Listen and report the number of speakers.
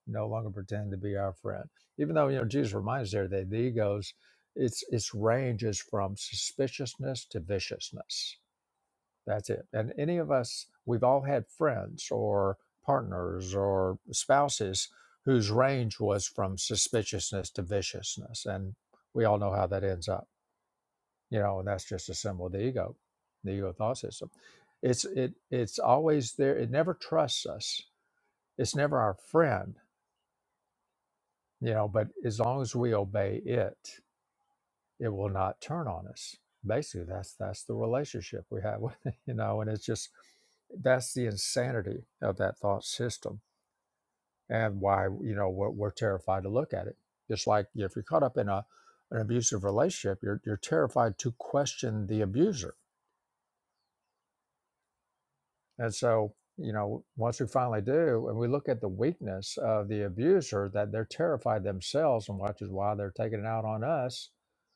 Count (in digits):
1